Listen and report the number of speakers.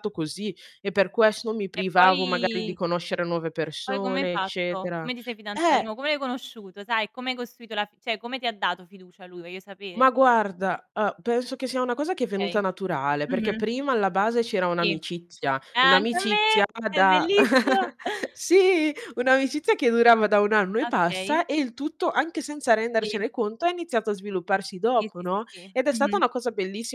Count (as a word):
two